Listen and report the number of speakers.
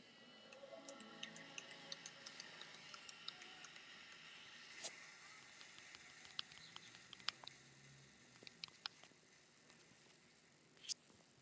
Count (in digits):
0